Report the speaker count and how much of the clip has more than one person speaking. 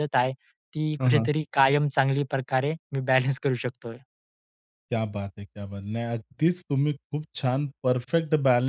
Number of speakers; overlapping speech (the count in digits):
2, about 3%